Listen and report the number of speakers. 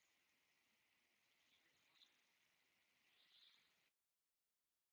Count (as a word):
zero